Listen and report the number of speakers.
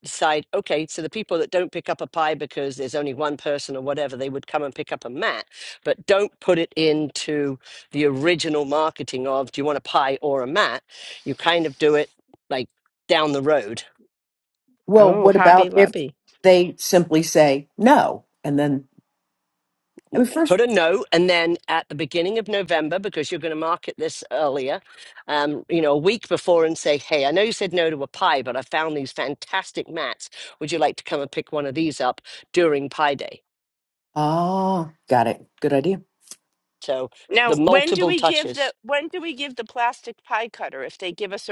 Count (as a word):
three